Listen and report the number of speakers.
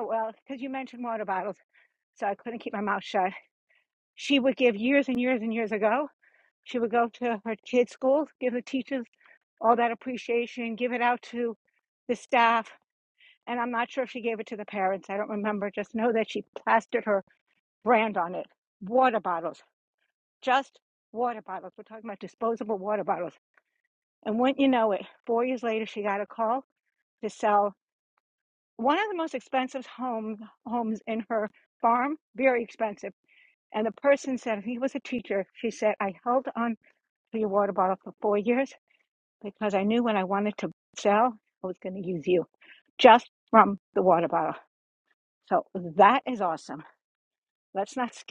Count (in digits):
1